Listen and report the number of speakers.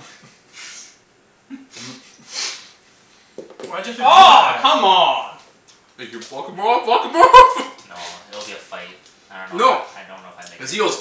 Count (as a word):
four